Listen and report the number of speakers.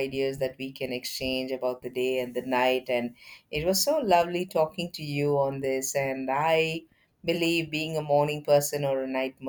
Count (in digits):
1